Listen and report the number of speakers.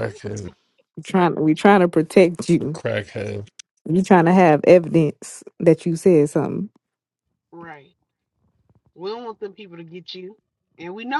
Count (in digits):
3